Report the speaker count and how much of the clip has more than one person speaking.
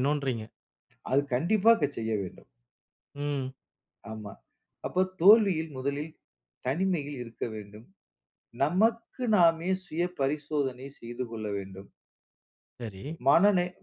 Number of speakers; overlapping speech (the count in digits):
2, no overlap